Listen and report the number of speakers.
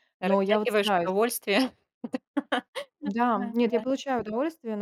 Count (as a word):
two